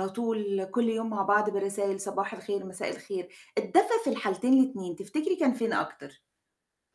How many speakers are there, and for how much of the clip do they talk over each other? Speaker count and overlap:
1, no overlap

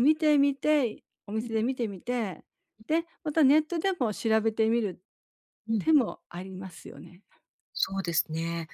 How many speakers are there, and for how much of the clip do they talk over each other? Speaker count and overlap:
2, about 1%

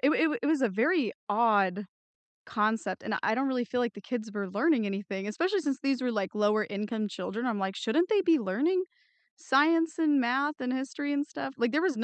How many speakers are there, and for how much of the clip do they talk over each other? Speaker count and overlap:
1, no overlap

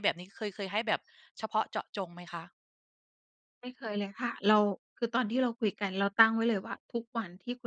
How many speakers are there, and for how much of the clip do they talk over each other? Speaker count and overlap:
2, no overlap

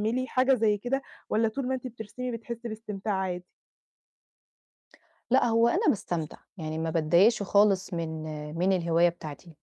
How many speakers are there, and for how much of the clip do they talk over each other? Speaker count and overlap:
2, no overlap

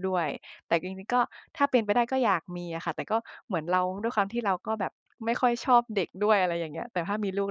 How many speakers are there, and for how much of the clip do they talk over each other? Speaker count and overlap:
1, no overlap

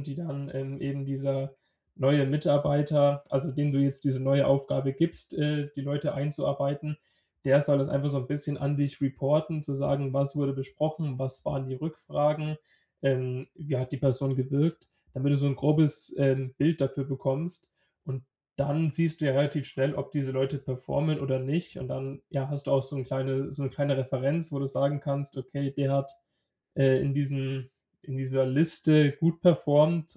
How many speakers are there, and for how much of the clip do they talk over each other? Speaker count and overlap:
1, no overlap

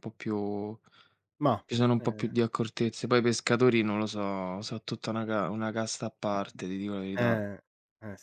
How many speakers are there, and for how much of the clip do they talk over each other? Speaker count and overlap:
2, about 7%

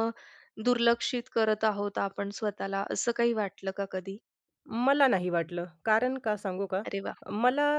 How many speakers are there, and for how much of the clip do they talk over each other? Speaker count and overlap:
2, no overlap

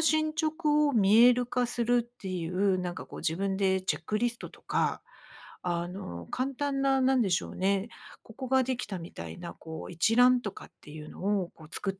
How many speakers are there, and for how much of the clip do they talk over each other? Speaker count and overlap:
1, no overlap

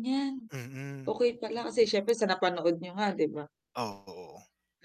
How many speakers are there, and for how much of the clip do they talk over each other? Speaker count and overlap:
2, no overlap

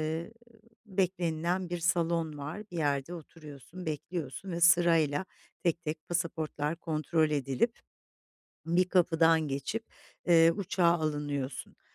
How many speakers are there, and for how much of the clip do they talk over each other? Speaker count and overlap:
1, no overlap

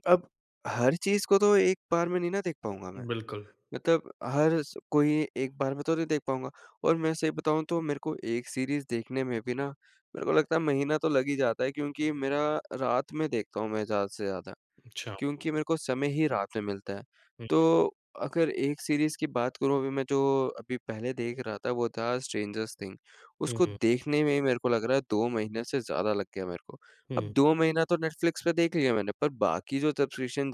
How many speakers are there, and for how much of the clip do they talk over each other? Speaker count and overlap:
2, about 2%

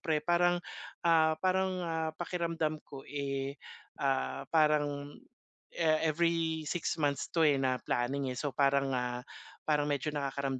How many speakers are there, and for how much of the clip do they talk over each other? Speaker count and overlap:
1, no overlap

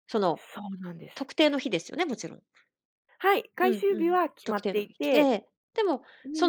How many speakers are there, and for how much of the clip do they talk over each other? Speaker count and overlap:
2, about 24%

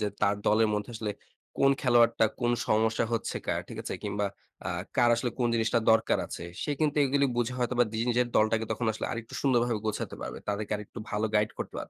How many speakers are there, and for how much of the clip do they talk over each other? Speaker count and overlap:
1, no overlap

